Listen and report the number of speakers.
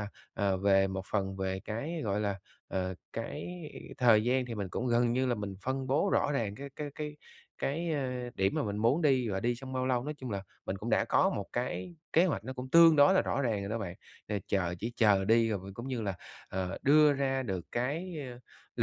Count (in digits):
1